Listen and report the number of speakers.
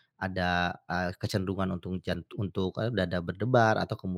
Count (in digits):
1